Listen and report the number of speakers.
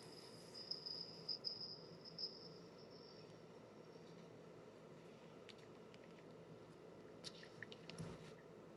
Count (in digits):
0